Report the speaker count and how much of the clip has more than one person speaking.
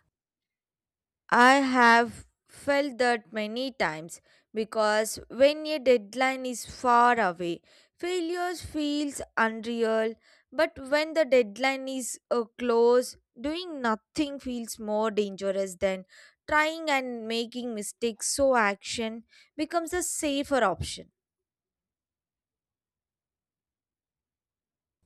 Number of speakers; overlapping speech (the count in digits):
1, no overlap